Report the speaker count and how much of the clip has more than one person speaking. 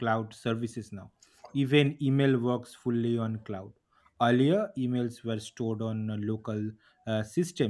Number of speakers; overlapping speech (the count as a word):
one, no overlap